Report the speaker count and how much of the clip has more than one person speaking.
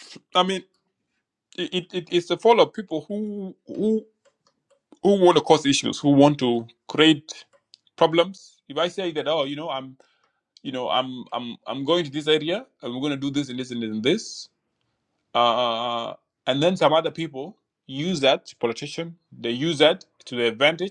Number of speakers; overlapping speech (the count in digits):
1, no overlap